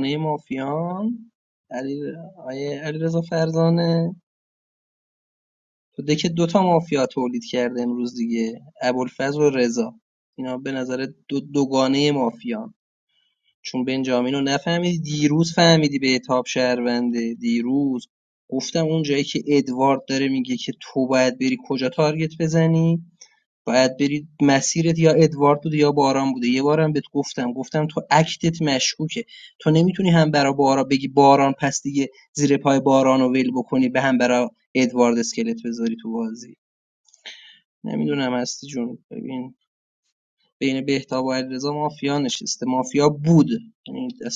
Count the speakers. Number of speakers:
one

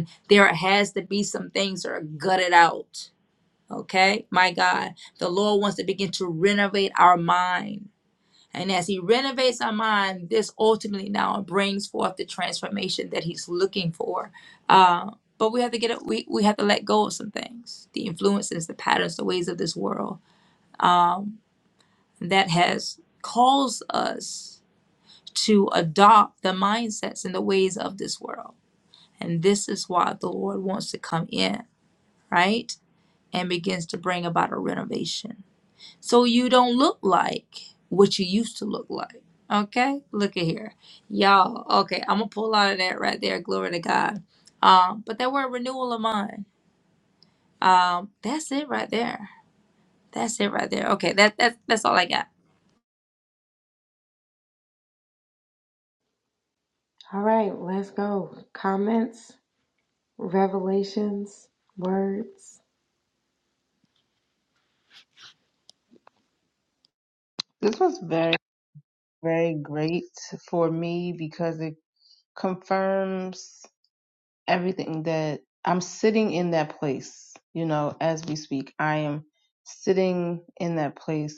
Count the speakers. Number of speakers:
three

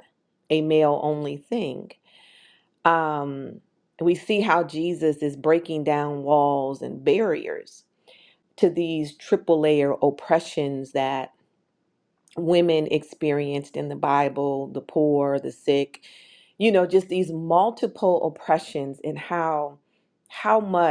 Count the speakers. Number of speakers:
one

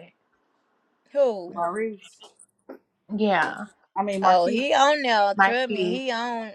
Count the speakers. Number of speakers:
three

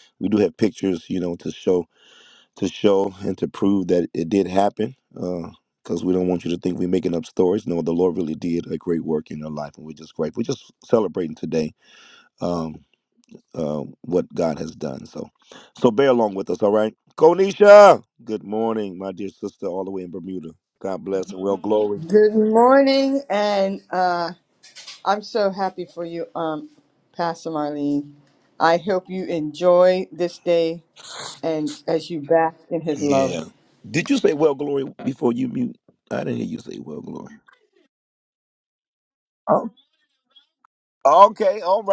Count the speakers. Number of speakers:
two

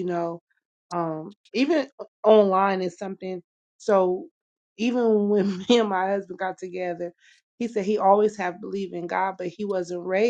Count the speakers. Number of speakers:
one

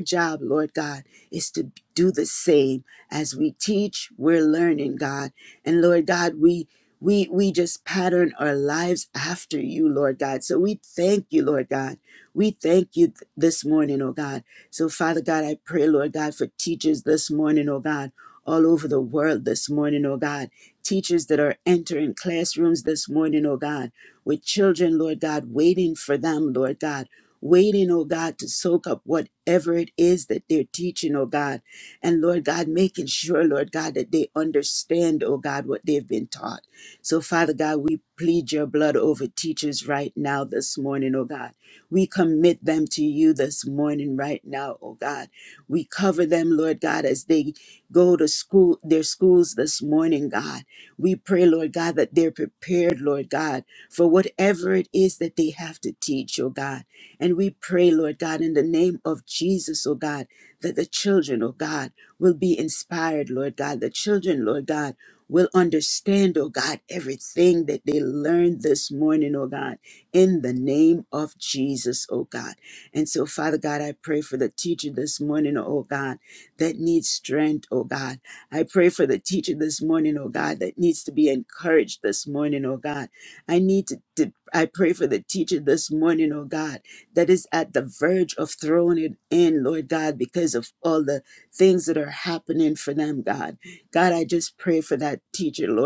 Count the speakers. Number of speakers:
one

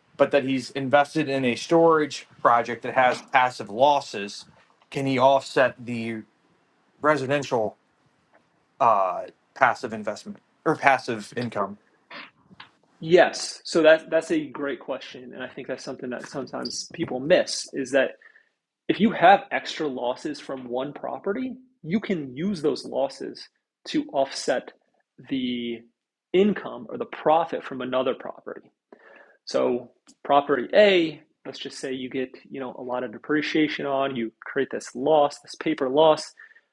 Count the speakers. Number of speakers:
two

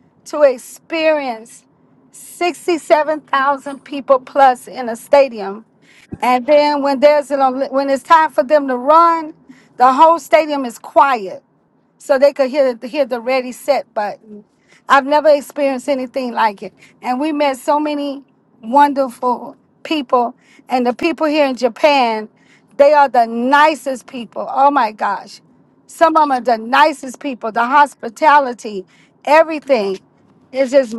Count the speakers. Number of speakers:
one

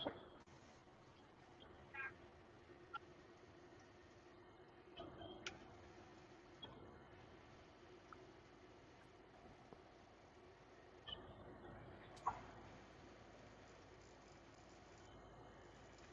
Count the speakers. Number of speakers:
zero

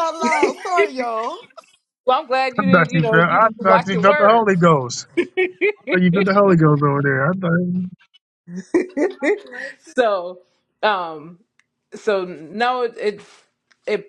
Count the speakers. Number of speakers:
three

